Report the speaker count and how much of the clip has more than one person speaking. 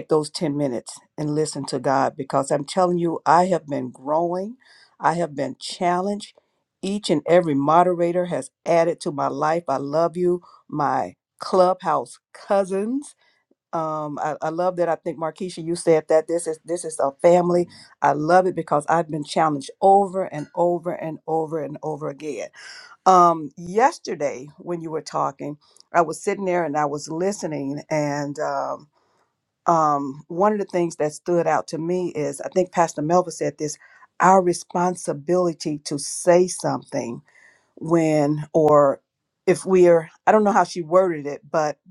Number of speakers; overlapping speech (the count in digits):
1, no overlap